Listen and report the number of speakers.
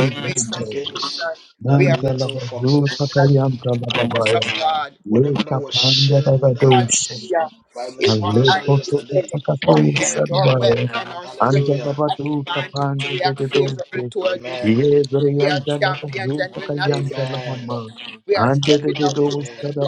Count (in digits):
3